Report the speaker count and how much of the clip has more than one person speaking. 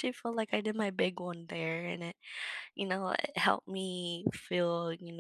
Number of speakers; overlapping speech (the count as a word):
one, no overlap